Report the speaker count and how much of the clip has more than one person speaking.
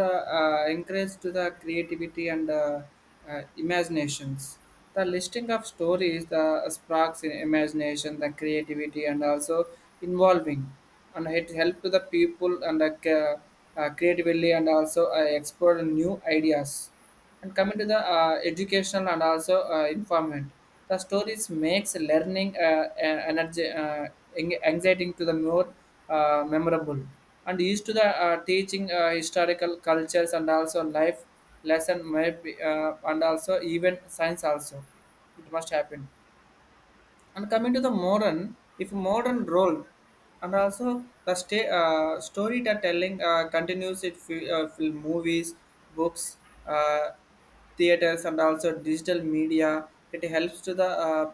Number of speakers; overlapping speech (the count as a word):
one, no overlap